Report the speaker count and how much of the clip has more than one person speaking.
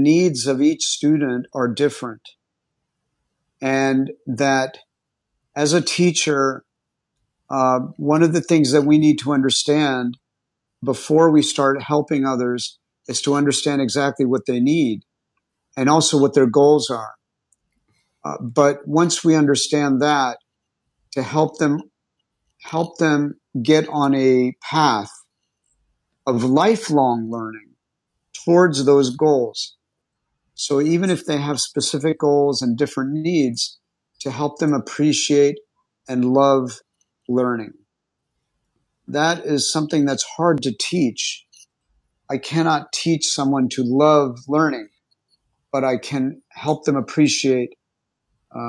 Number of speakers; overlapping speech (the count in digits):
1, no overlap